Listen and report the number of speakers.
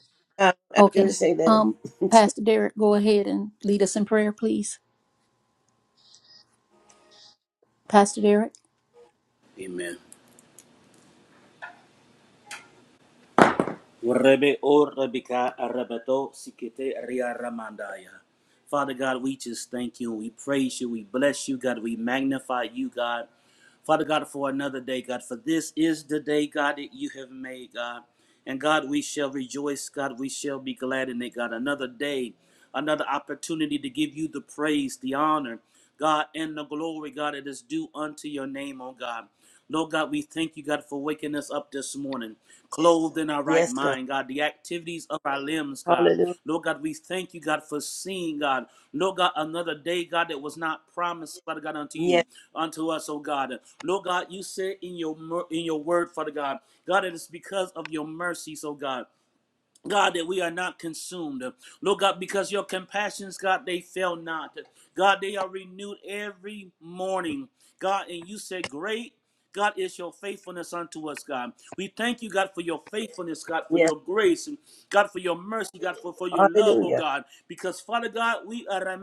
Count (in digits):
3